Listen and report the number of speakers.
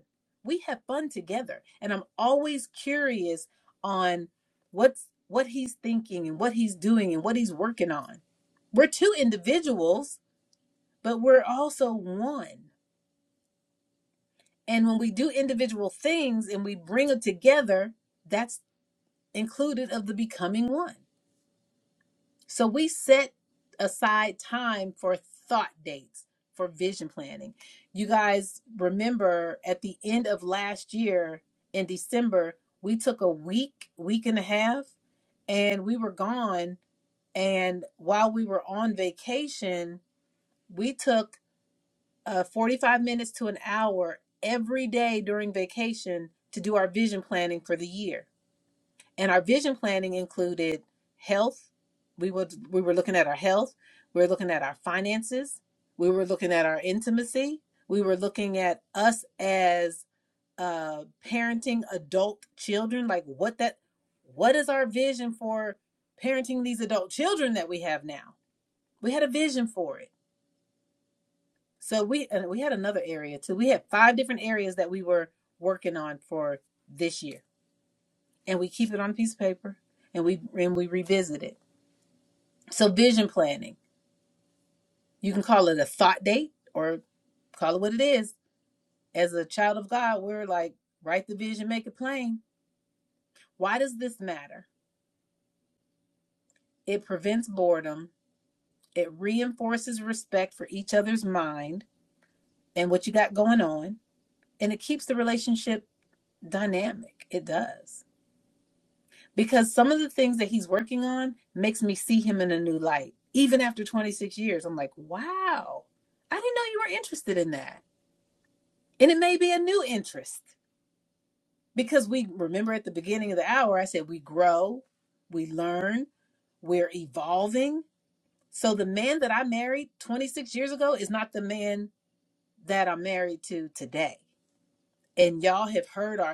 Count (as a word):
one